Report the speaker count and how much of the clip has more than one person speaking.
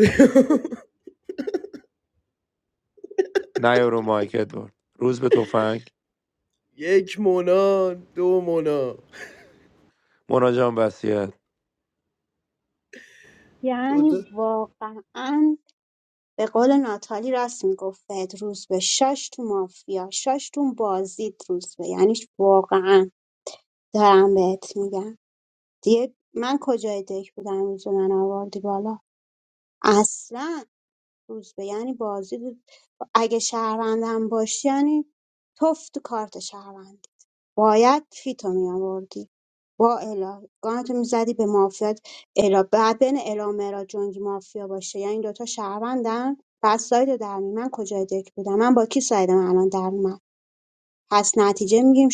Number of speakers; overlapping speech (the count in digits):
3, about 1%